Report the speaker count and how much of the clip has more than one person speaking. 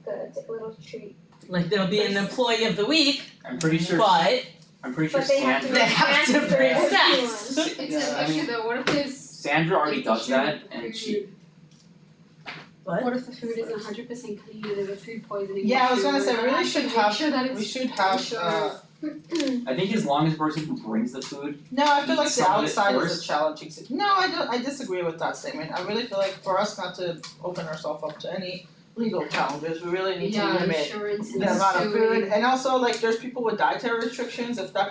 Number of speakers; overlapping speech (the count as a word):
five, about 37%